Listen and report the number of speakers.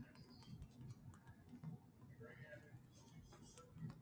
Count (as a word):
zero